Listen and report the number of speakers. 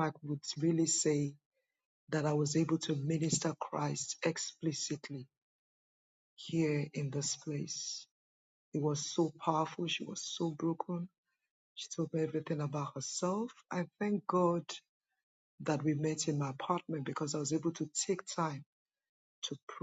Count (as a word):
one